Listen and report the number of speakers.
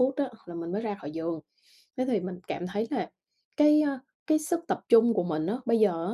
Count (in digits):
1